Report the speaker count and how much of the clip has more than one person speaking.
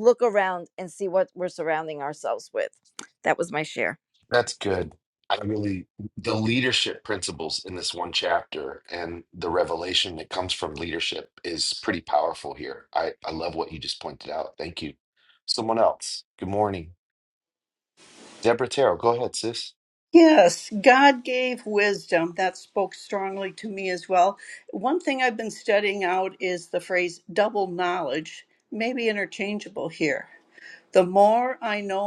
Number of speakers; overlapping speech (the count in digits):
3, no overlap